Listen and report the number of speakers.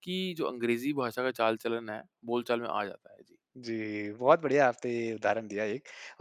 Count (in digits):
2